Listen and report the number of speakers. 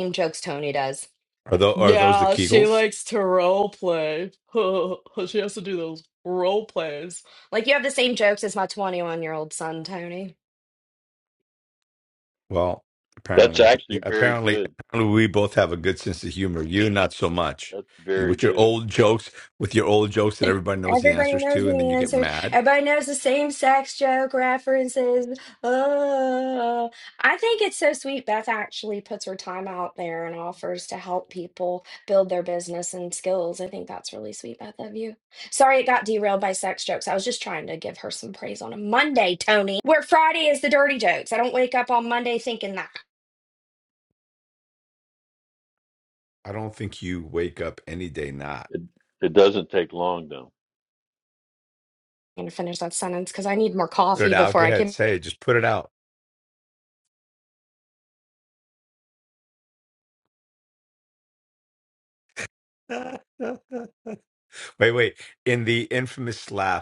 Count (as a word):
three